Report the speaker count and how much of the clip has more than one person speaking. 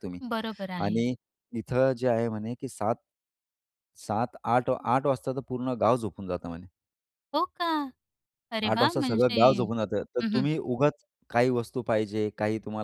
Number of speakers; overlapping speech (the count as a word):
two, about 10%